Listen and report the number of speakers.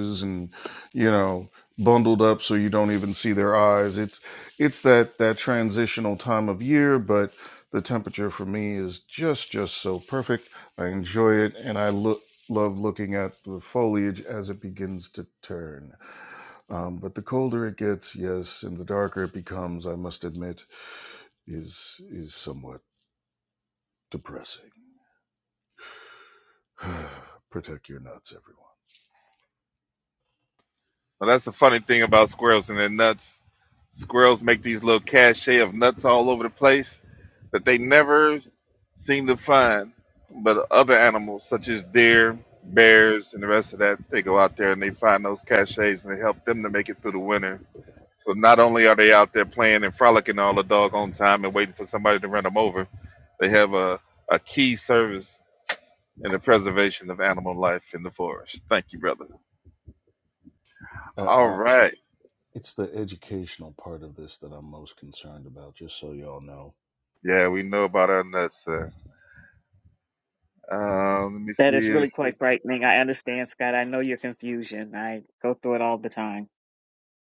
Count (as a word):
three